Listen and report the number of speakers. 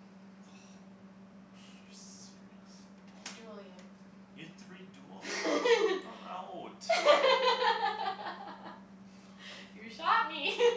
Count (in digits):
2